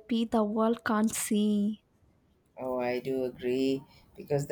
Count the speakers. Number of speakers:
2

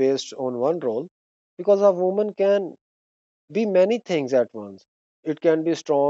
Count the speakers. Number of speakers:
1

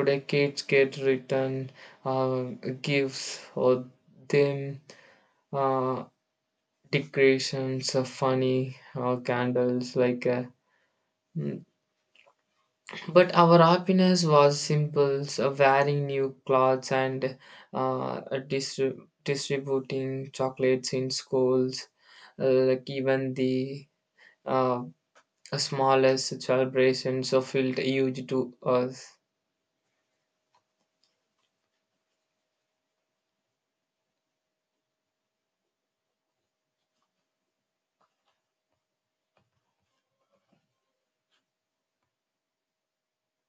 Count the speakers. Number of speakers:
1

